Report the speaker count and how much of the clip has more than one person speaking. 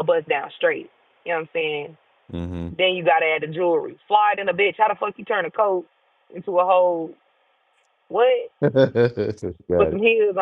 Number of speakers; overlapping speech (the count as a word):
two, about 2%